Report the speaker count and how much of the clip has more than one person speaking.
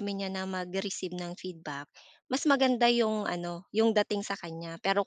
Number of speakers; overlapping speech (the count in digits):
1, no overlap